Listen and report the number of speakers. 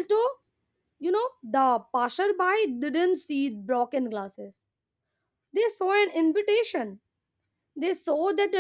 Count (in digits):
1